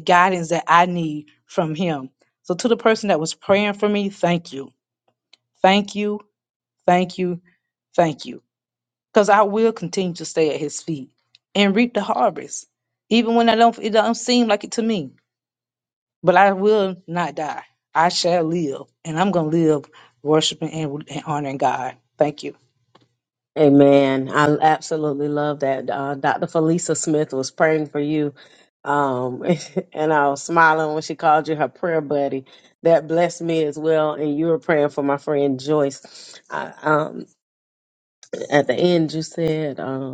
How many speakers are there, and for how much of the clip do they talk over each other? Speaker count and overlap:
2, no overlap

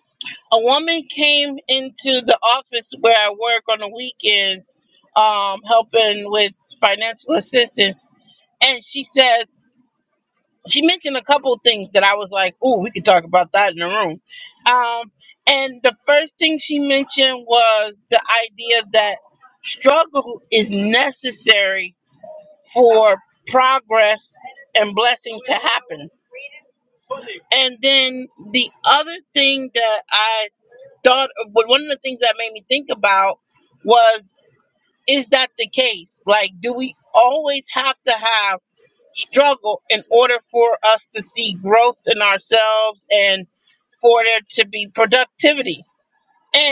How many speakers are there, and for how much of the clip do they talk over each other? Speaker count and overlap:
1, no overlap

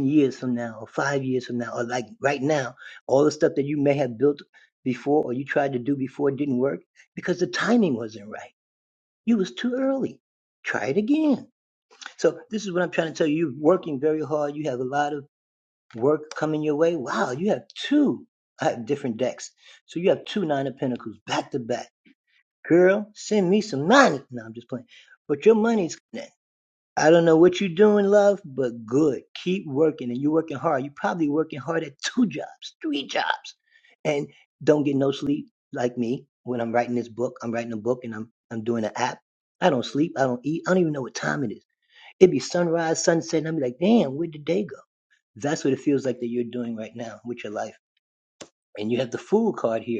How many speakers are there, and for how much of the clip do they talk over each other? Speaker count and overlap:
1, no overlap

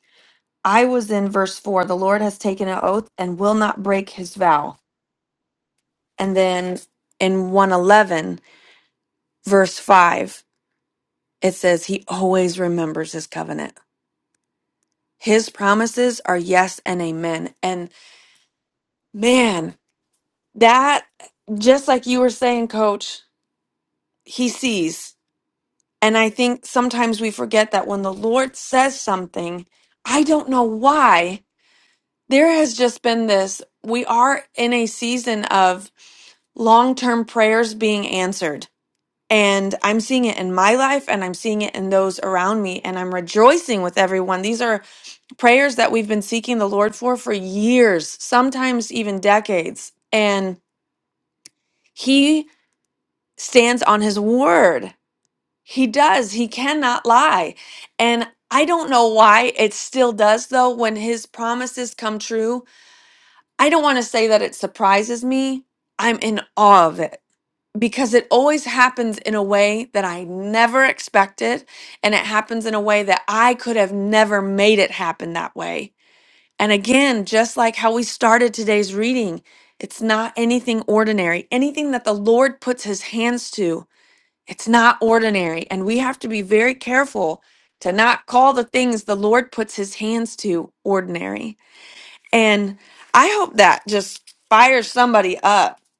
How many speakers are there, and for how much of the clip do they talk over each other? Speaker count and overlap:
1, no overlap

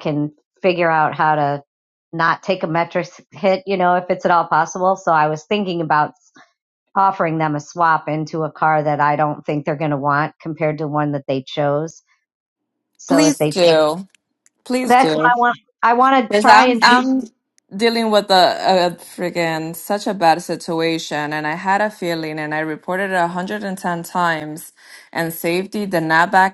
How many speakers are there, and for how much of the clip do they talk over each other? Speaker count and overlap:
2, about 6%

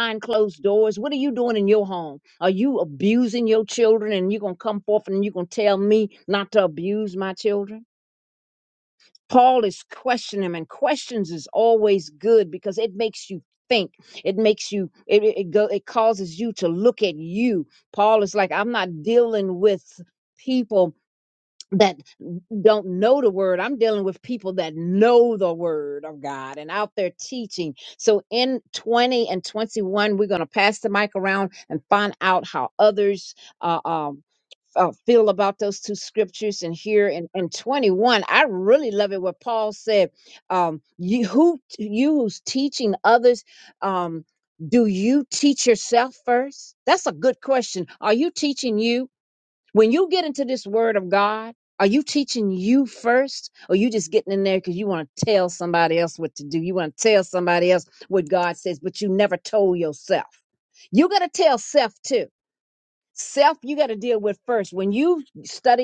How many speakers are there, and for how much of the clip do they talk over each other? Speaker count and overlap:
1, no overlap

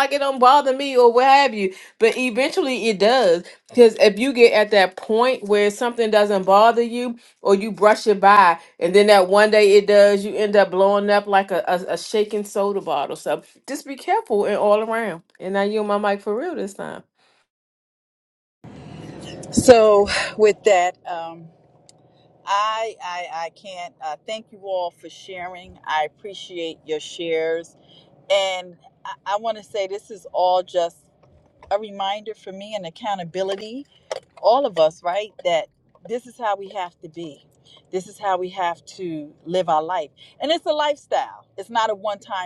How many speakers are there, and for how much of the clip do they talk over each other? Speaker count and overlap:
2, no overlap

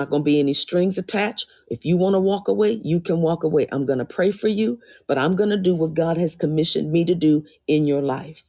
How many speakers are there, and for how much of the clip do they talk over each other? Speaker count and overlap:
1, no overlap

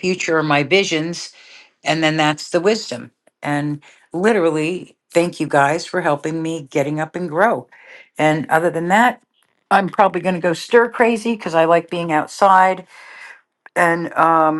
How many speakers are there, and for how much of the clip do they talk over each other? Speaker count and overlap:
1, no overlap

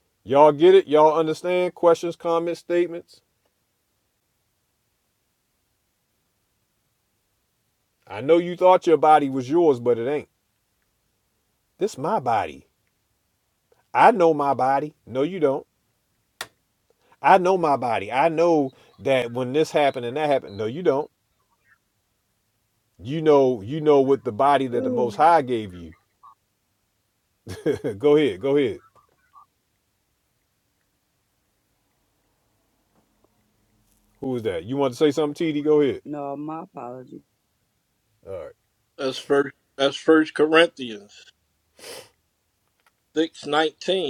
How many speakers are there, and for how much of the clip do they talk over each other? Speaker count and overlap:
3, about 1%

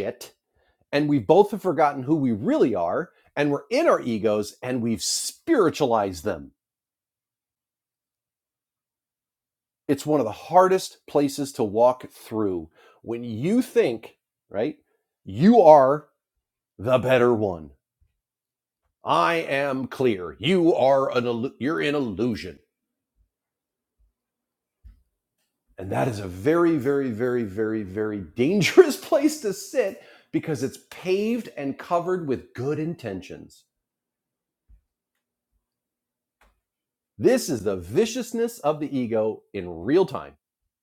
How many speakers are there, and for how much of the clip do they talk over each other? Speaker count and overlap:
1, no overlap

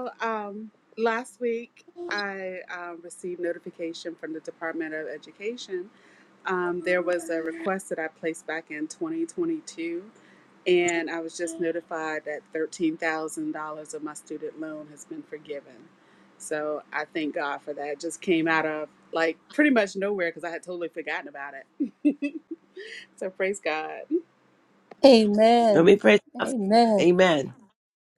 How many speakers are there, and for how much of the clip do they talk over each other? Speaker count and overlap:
3, about 1%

